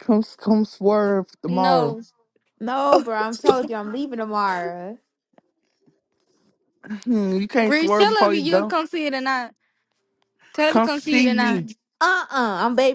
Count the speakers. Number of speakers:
3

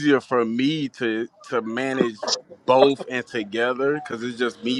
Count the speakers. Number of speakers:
1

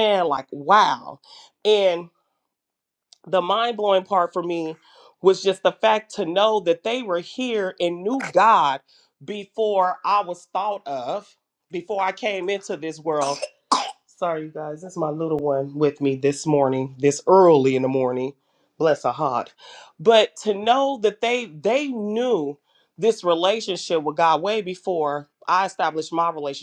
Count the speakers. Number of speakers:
1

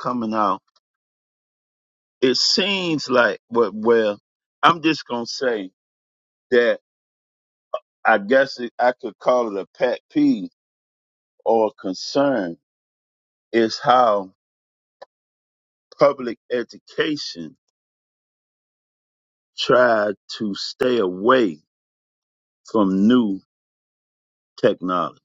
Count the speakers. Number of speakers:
1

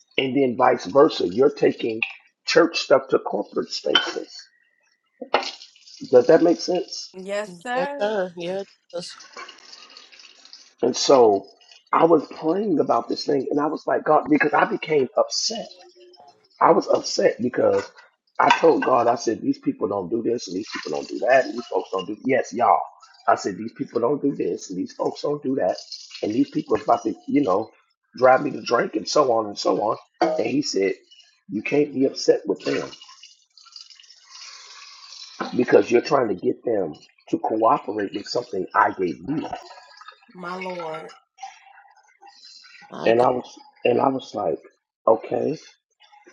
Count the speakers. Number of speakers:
3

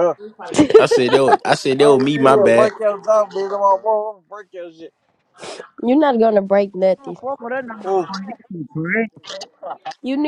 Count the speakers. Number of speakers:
4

